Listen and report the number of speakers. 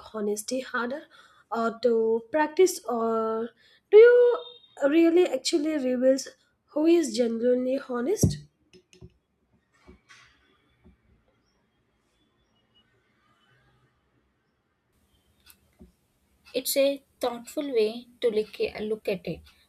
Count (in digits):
2